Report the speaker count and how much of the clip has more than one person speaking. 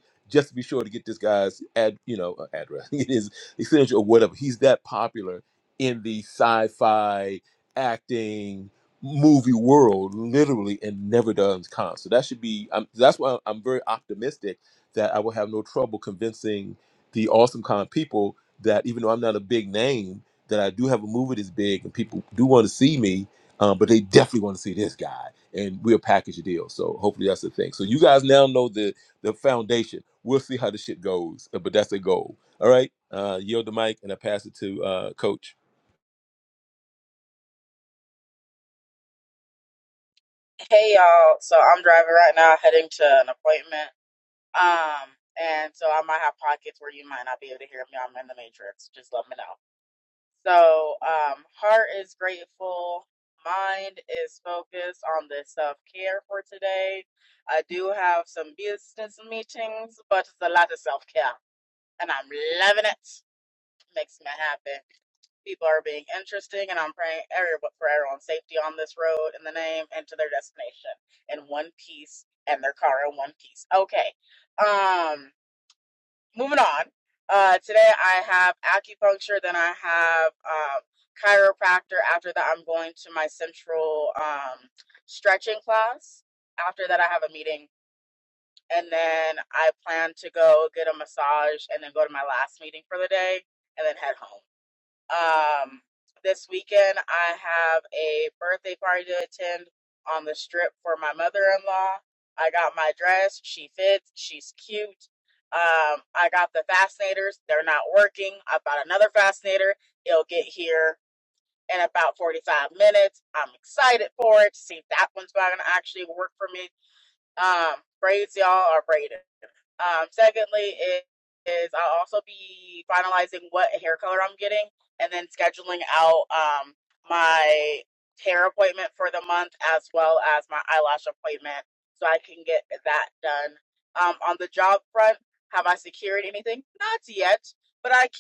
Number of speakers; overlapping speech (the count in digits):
2, no overlap